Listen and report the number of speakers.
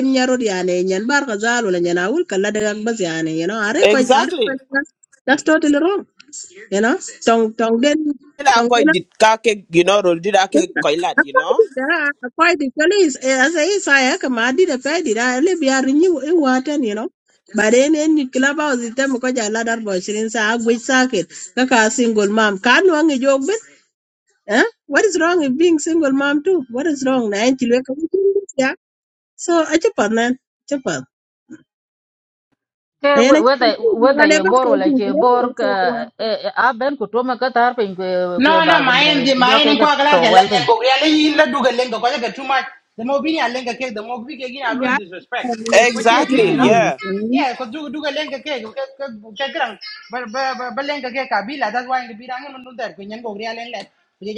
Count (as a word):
four